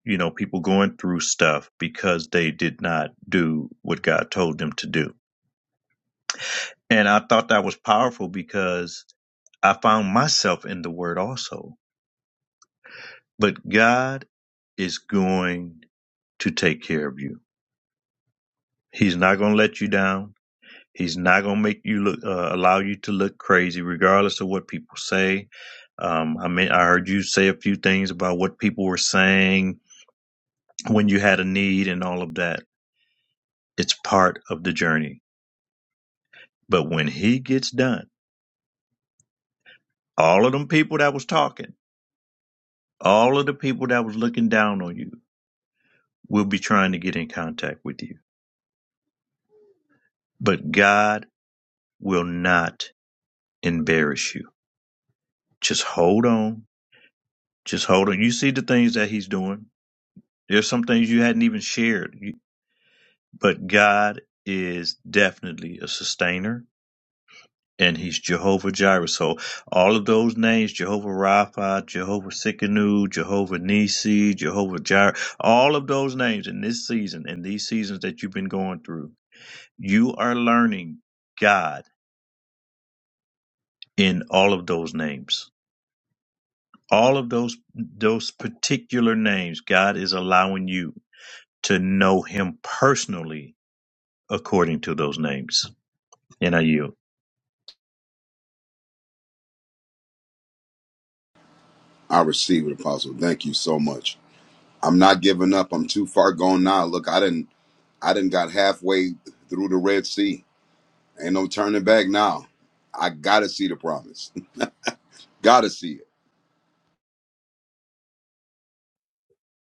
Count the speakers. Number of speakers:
2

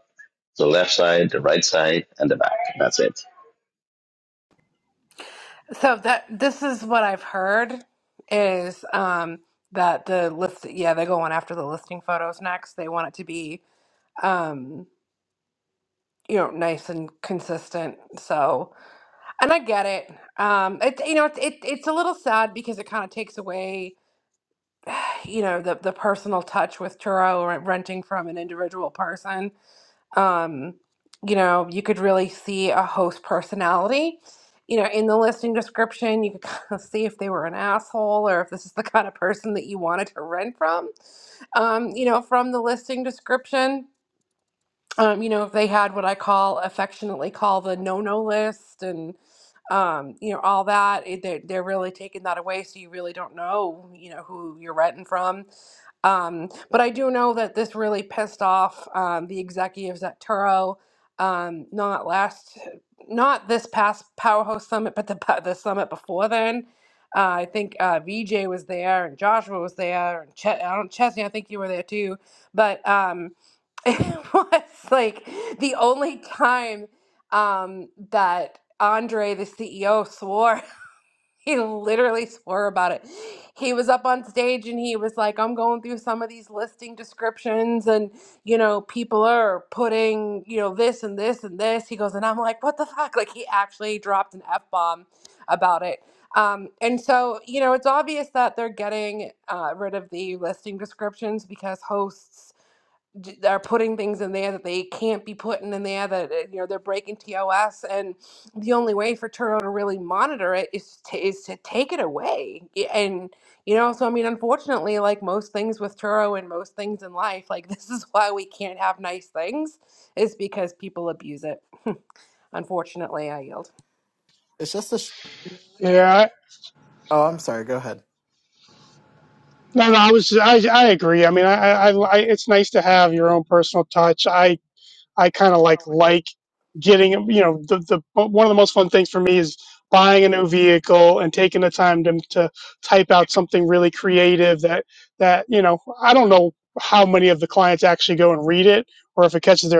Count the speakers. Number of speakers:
4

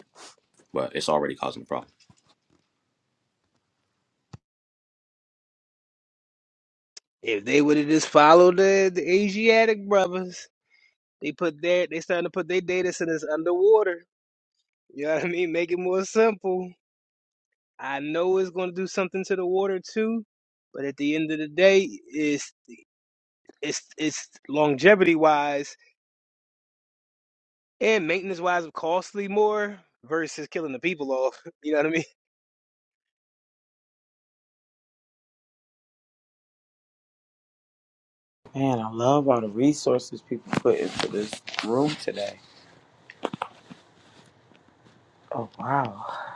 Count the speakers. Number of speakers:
3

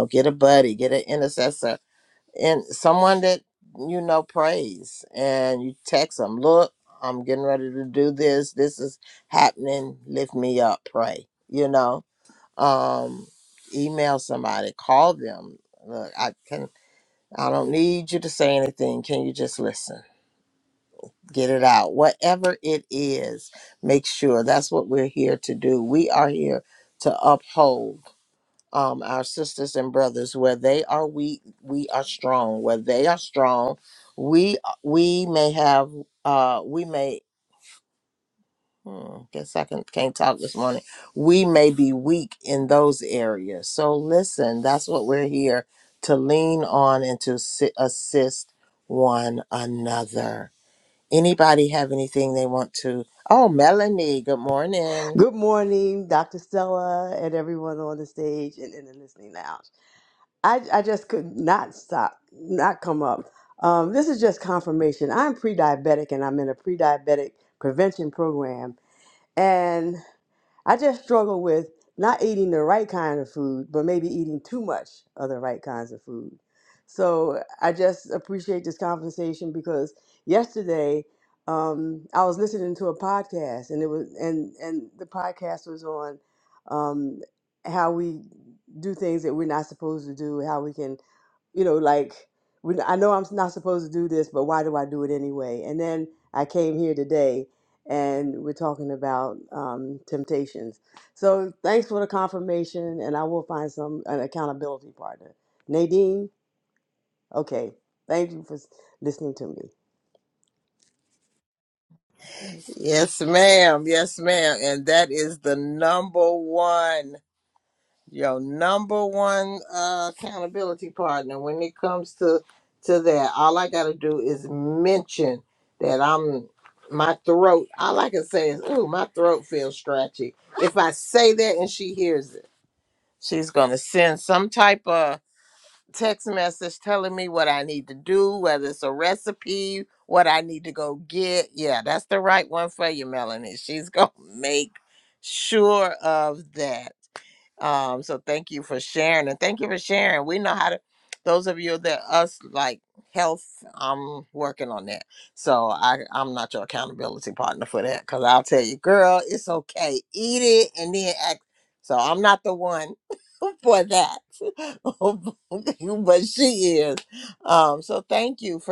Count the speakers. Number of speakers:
2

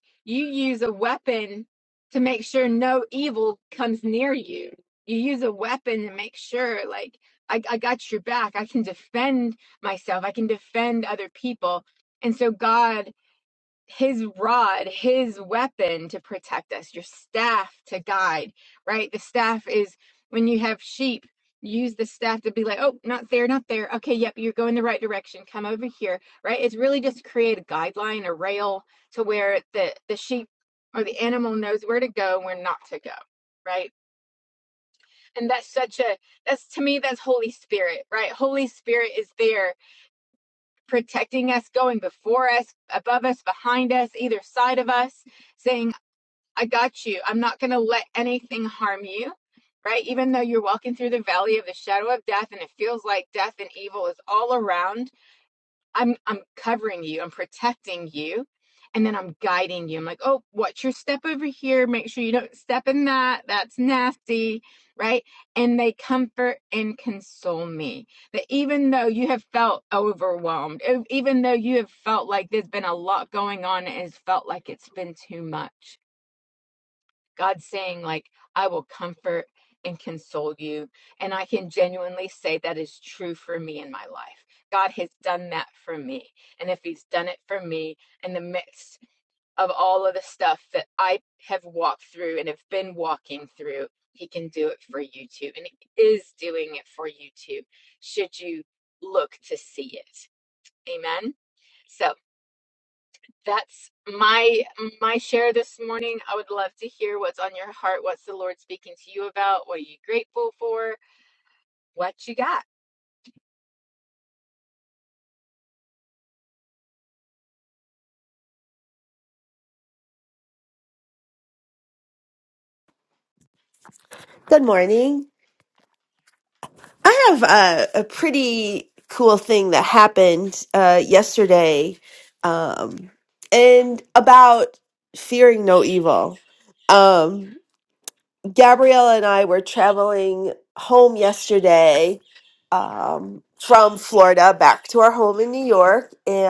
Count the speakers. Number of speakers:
2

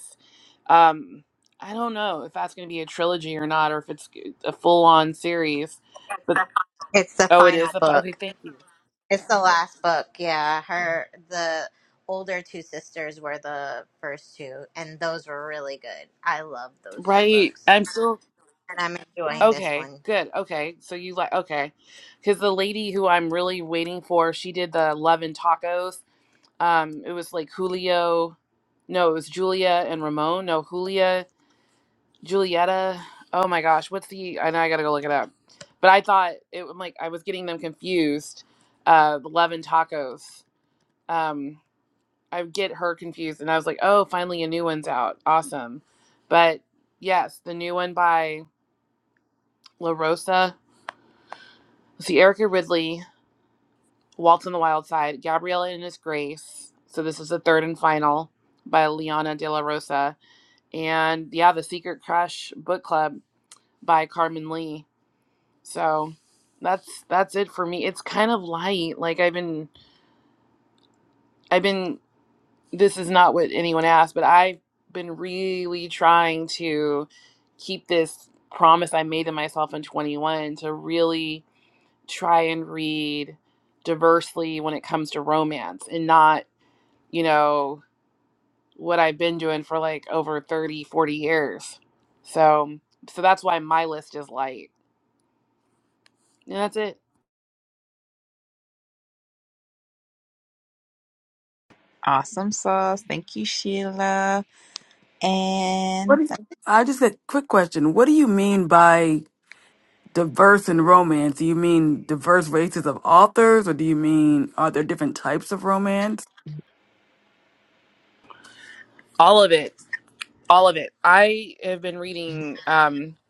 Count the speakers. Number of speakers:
4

